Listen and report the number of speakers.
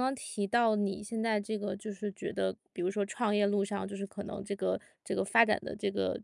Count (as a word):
one